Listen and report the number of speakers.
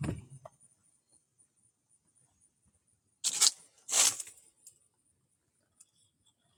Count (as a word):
zero